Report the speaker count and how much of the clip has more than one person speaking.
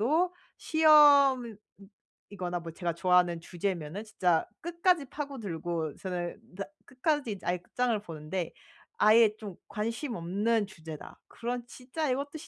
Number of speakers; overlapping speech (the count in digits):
1, no overlap